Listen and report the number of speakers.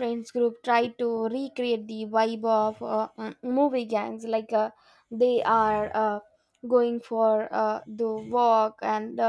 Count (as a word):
one